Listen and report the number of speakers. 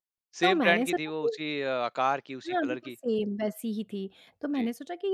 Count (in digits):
2